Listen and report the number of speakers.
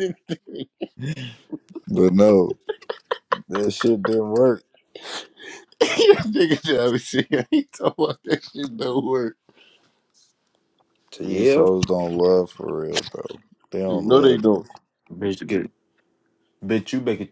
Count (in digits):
3